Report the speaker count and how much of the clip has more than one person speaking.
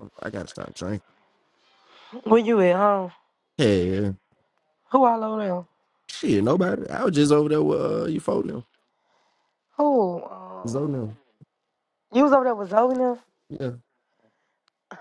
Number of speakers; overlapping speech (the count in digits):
2, about 1%